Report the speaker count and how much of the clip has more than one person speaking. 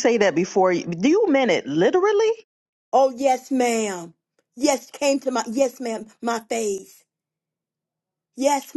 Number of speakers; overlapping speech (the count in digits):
2, no overlap